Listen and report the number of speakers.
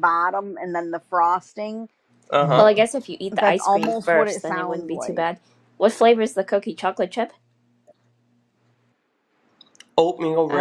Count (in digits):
3